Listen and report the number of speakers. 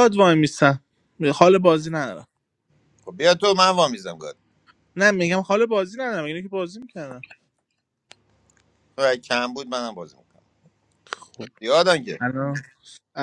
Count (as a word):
two